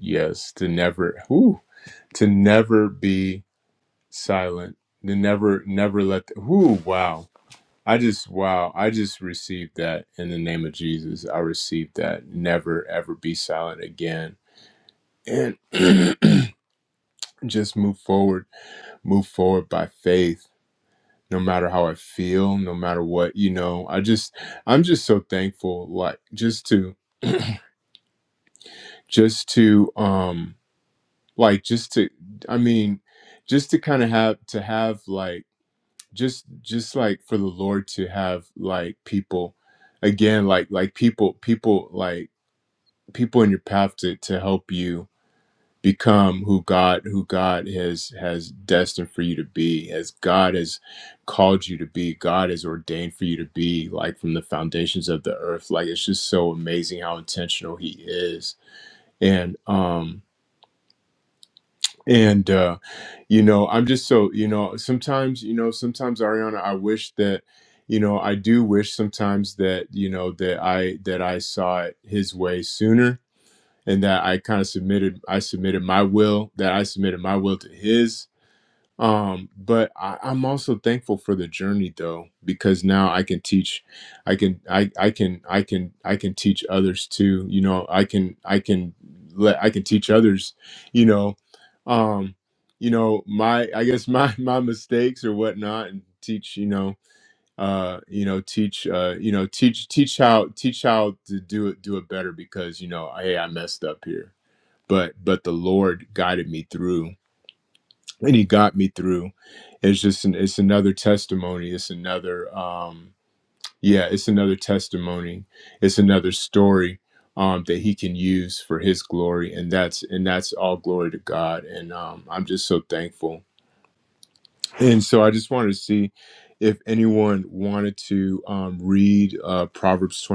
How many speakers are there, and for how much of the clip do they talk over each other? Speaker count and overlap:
1, no overlap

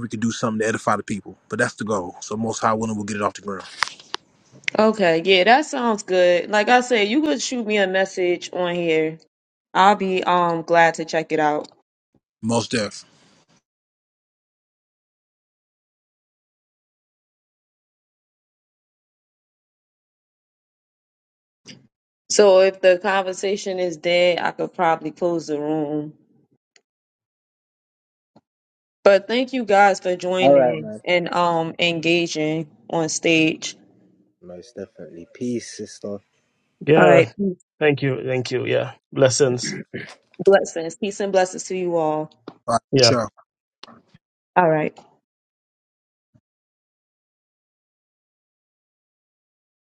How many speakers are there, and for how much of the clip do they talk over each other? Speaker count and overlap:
4, about 2%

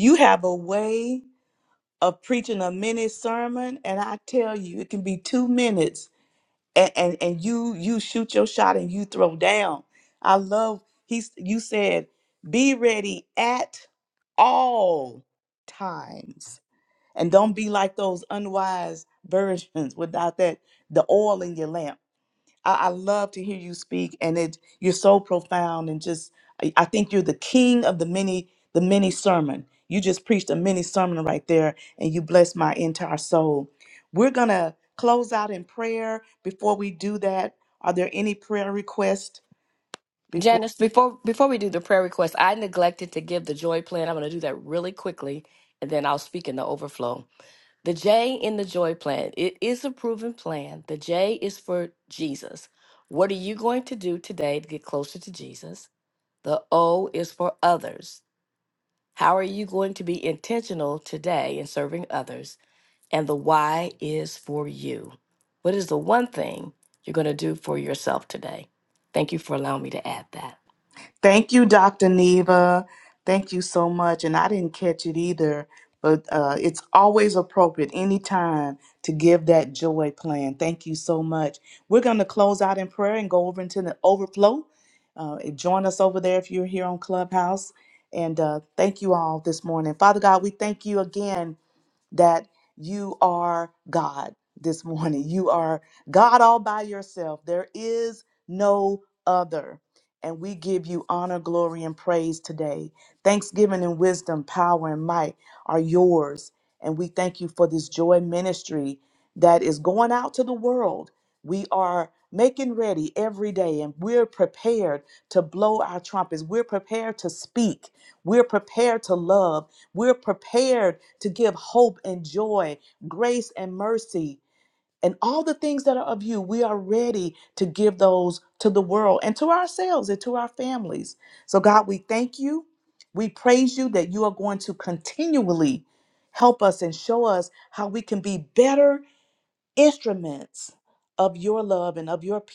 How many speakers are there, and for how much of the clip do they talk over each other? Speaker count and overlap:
2, under 1%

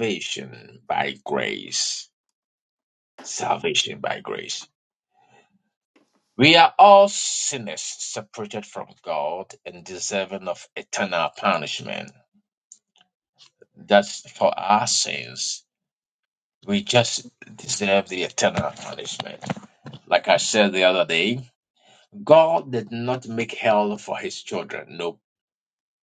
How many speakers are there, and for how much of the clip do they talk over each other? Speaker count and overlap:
1, no overlap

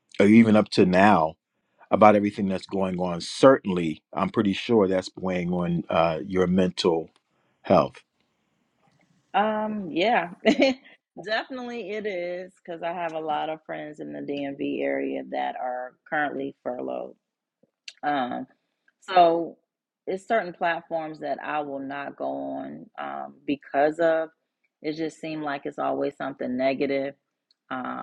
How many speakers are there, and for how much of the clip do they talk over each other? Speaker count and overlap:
2, no overlap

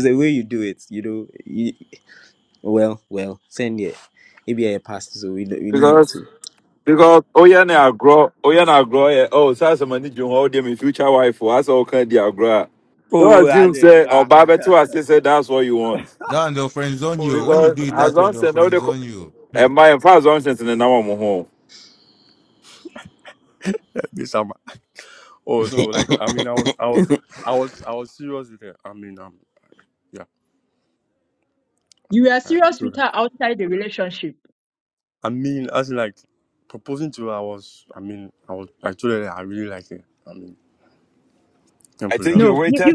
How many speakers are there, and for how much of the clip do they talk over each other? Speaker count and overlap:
5, about 11%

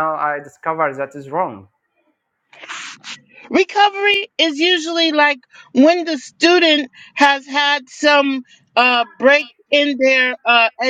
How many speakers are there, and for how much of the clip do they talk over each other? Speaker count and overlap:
2, no overlap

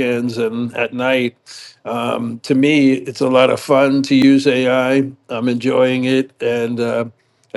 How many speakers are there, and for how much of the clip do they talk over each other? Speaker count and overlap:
1, no overlap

